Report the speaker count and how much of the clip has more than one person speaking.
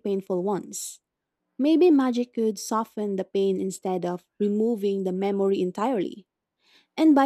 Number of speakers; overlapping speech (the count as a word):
one, no overlap